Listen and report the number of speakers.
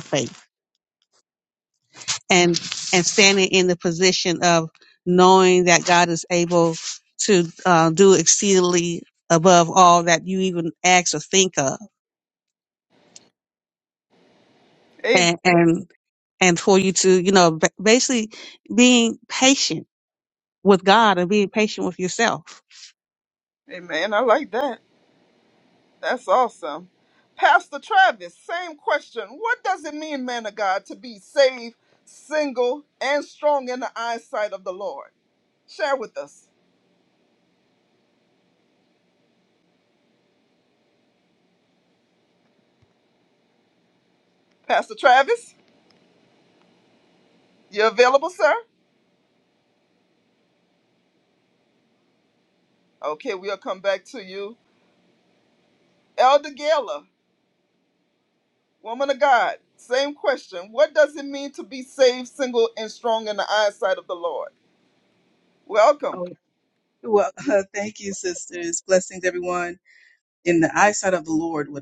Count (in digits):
3